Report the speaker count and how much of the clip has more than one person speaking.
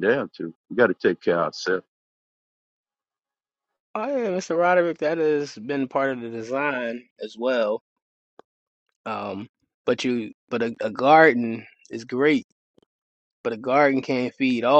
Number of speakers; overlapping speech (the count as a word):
two, no overlap